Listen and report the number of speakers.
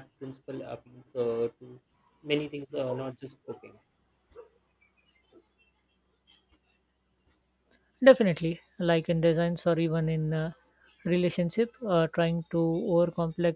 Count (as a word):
two